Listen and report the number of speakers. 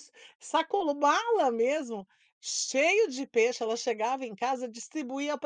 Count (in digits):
1